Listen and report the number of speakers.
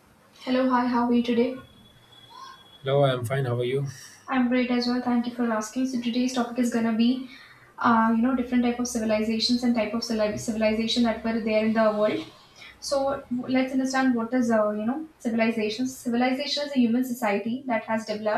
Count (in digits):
2